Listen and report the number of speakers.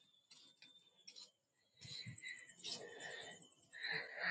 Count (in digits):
0